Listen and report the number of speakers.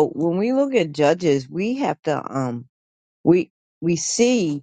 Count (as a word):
one